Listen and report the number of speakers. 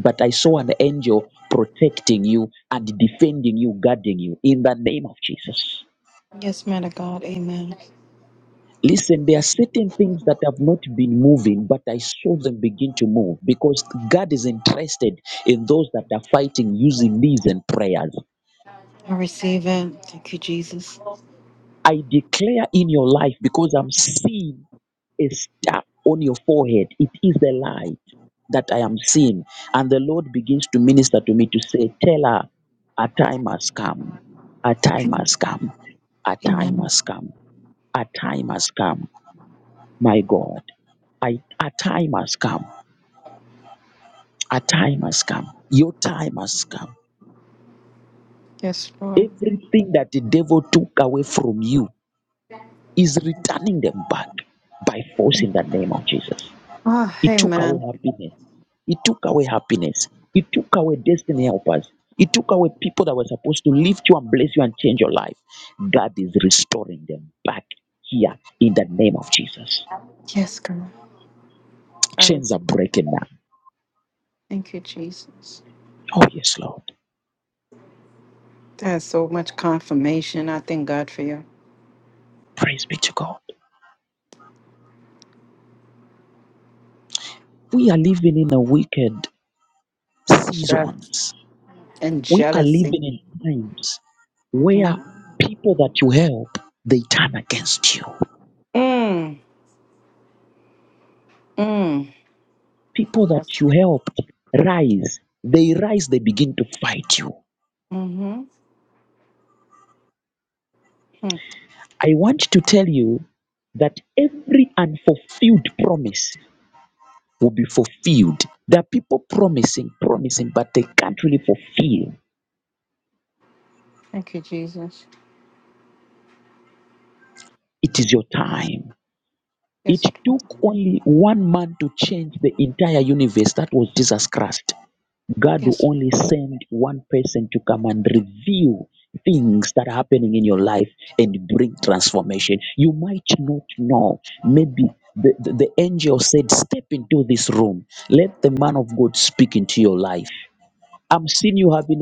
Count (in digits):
2